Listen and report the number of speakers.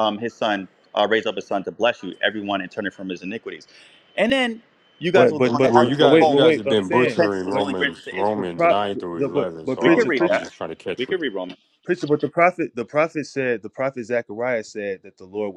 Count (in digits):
3